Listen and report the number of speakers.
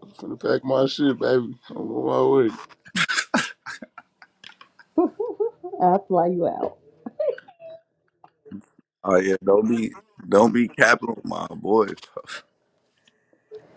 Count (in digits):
3